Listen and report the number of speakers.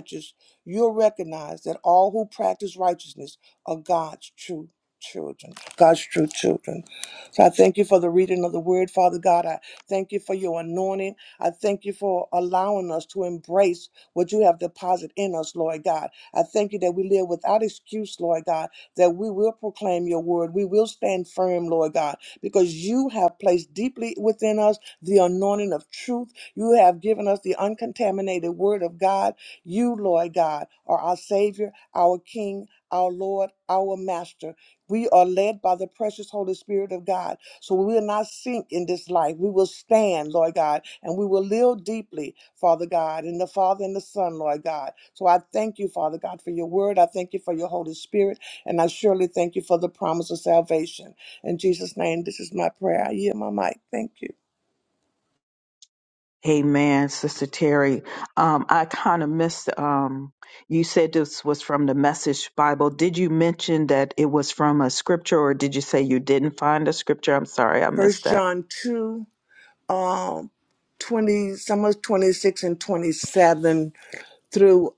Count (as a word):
two